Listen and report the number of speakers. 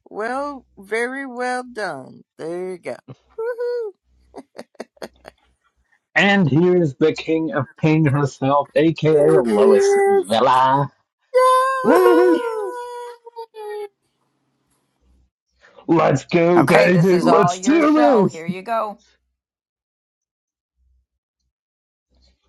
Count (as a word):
three